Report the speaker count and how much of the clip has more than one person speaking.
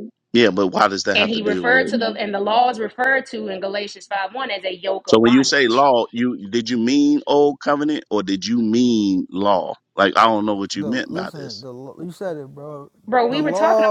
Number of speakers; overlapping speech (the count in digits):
3, about 21%